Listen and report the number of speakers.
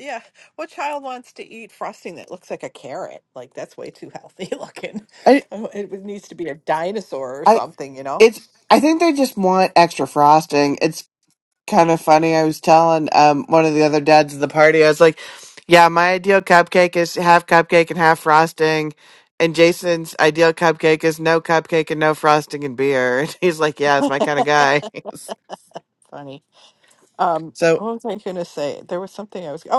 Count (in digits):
2